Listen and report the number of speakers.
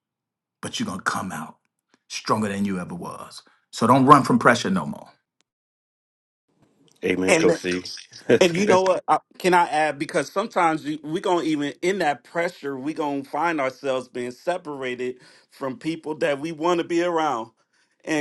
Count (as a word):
three